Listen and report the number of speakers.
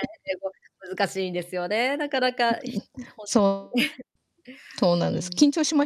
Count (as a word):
two